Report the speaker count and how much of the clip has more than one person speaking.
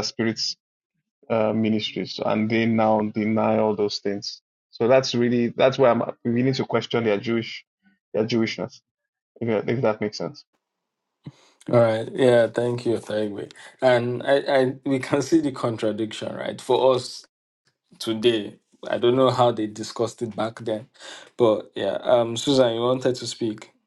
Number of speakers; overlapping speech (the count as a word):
two, no overlap